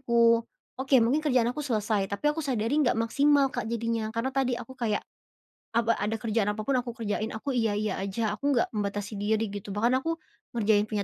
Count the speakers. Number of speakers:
1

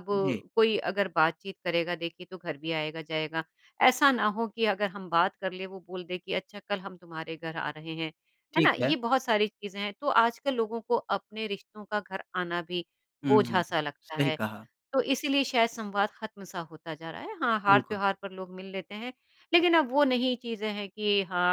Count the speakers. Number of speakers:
2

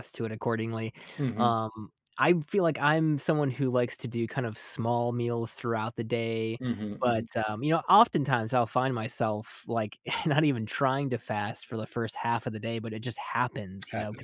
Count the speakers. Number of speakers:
2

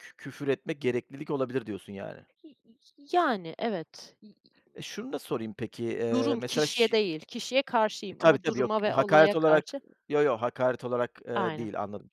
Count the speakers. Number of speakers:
2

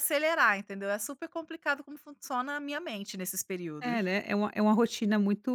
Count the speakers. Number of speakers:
2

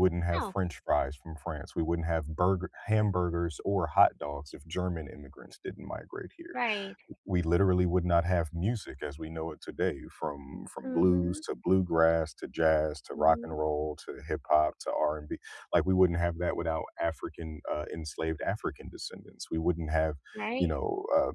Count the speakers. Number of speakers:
2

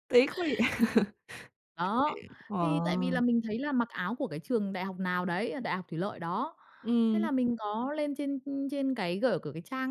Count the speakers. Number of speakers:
2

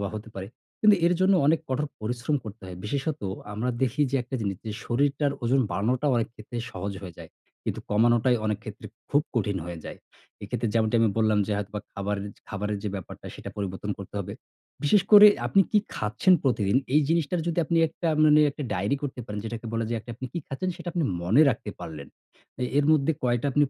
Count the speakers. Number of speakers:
1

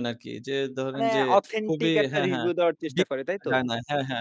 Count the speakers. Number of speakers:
2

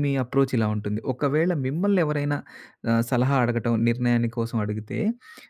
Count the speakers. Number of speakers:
1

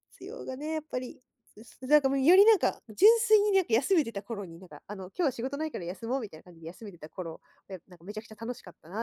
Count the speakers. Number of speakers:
1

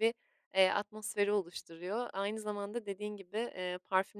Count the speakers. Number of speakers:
1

